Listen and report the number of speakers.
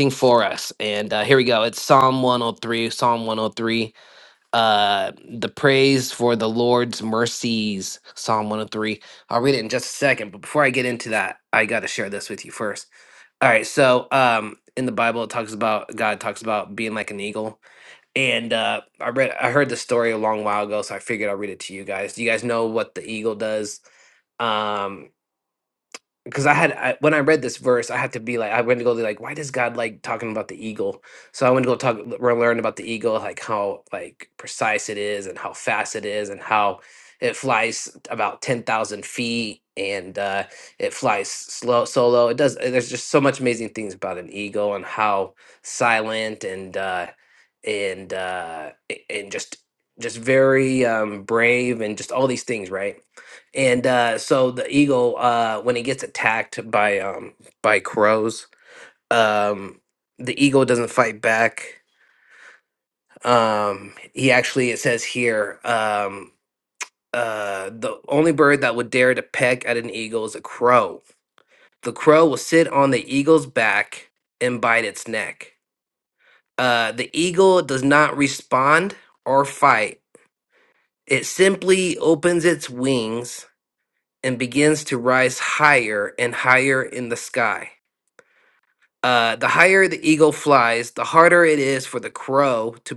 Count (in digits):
1